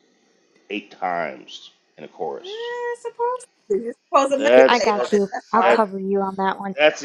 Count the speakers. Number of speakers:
3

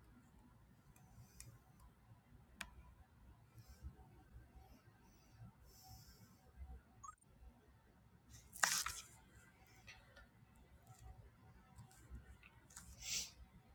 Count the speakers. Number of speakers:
0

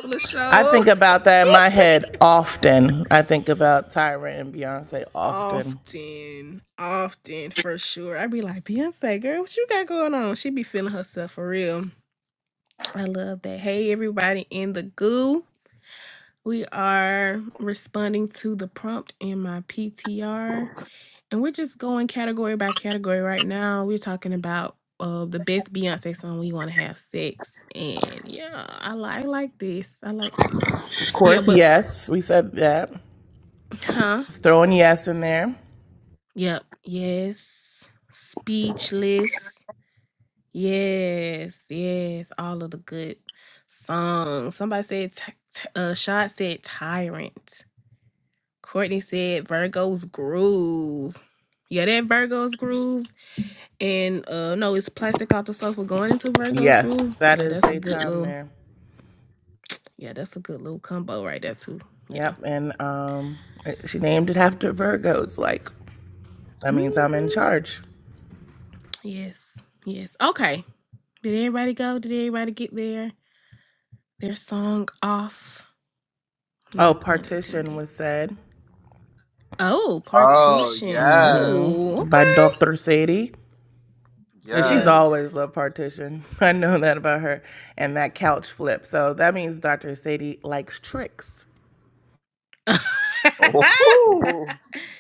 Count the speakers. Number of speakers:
3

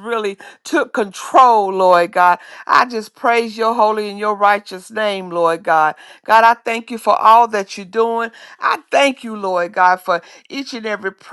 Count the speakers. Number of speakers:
1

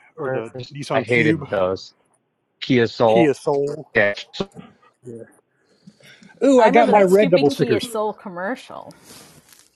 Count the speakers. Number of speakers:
3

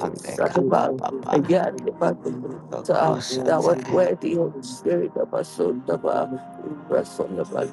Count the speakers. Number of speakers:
3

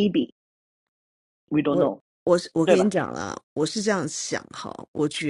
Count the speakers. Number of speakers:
2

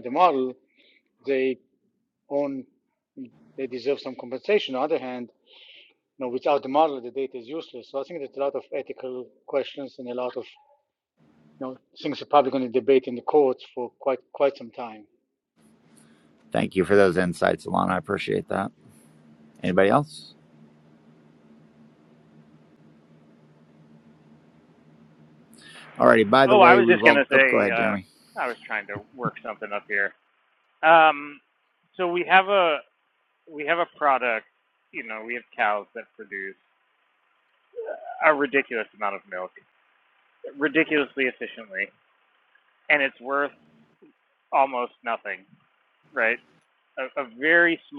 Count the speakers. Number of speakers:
3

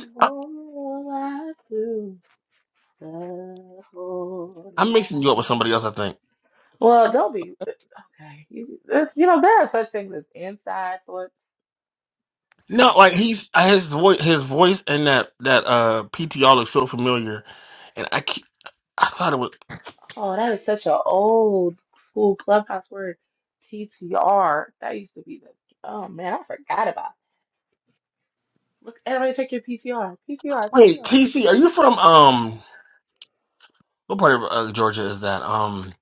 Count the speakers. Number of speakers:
2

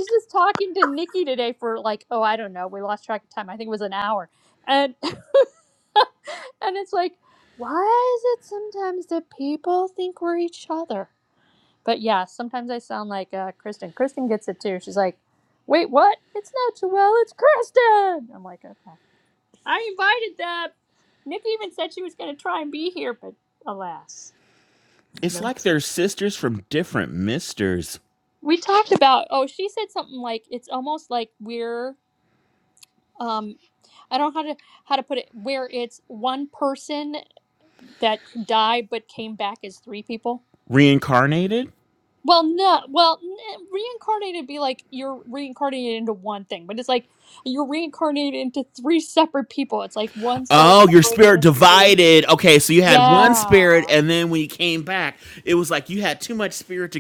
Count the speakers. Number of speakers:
2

